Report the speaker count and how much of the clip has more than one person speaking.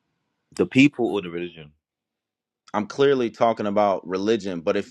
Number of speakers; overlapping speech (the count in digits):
2, no overlap